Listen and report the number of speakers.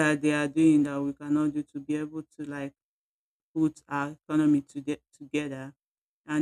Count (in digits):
1